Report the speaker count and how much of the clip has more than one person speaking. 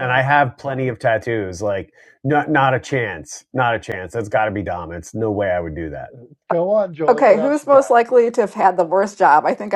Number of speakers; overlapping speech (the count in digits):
3, about 11%